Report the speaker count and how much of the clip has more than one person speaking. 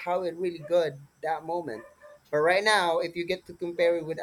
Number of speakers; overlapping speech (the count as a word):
one, no overlap